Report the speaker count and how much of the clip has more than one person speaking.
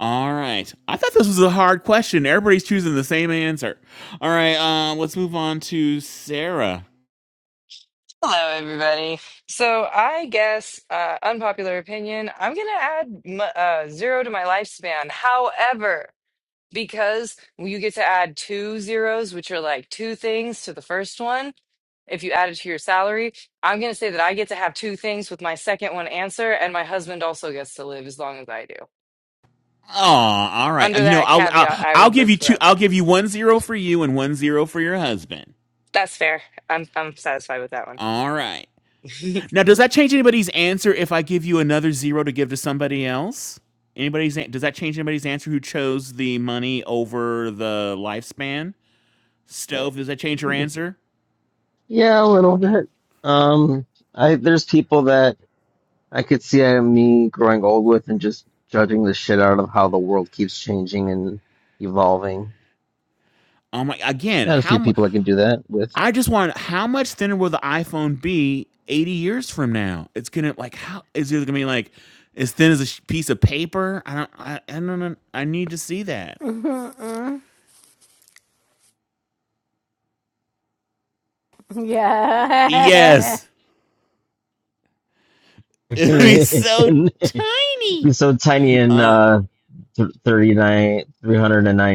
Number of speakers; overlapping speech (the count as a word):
four, about 3%